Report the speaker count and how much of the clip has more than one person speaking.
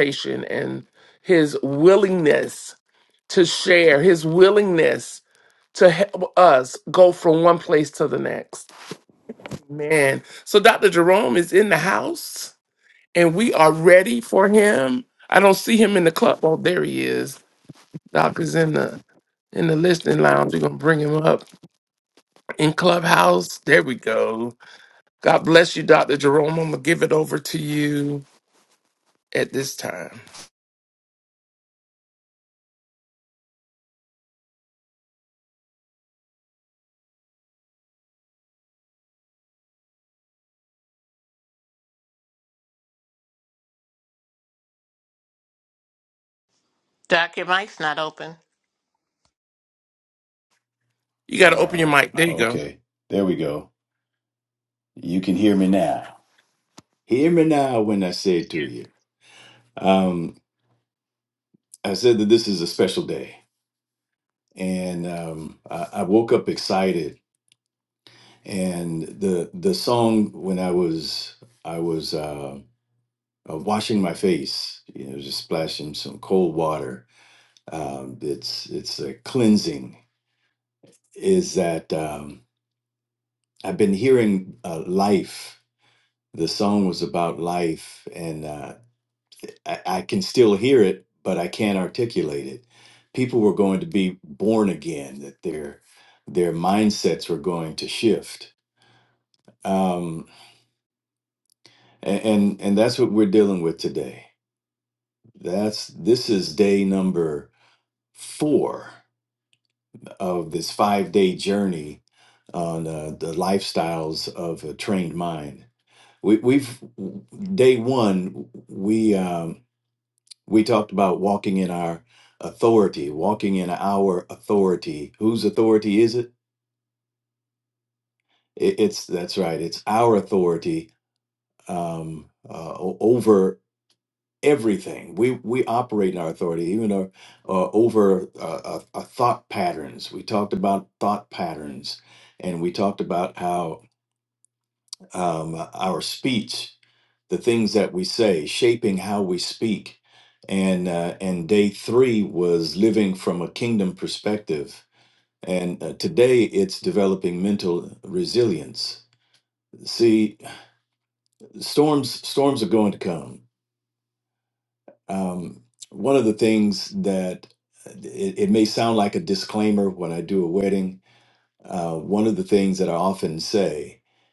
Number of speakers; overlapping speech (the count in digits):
3, under 1%